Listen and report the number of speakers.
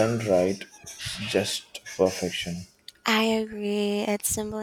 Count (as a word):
two